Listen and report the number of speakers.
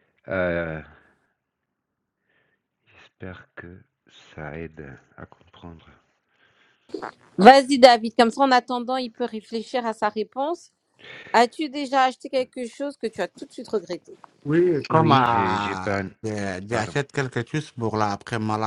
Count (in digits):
3